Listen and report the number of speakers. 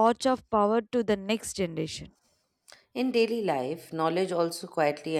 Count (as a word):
two